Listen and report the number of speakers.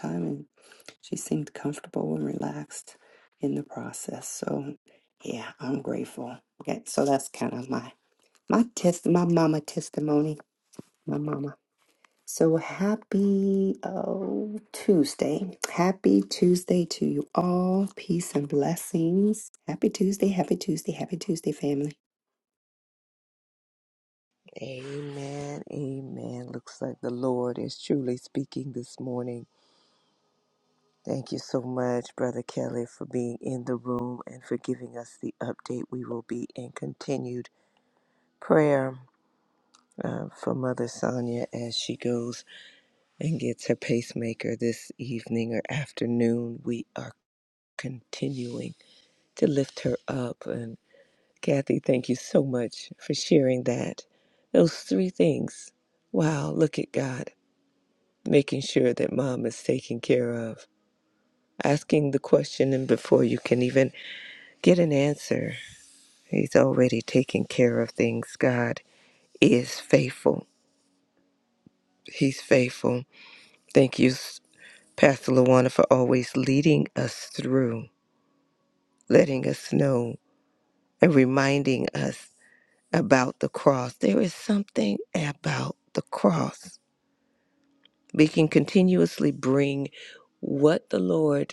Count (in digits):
2